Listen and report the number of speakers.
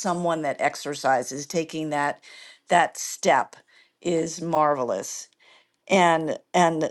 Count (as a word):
one